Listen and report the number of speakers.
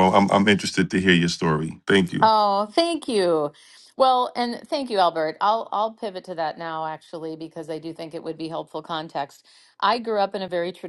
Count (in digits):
2